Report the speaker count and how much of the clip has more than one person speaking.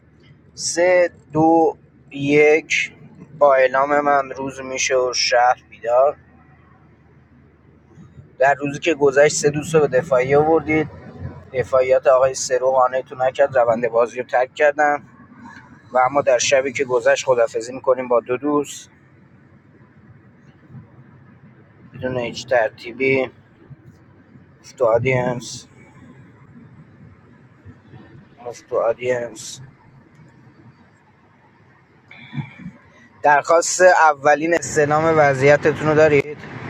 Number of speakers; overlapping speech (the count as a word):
one, no overlap